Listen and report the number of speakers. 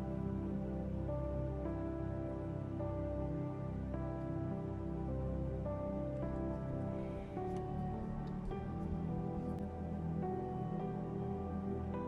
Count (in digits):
0